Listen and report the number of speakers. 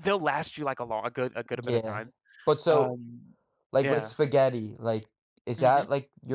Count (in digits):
2